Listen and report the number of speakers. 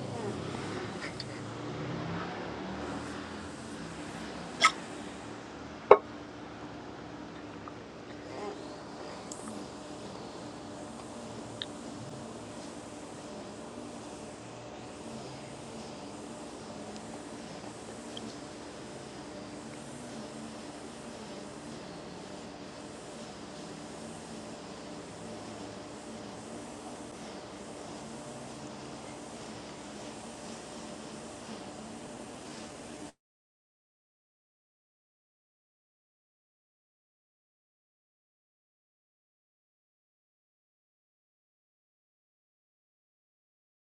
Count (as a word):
zero